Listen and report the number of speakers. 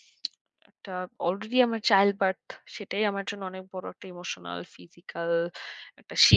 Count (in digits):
1